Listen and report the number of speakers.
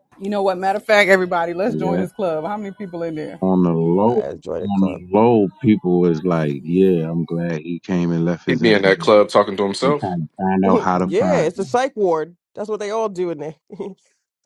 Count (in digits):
4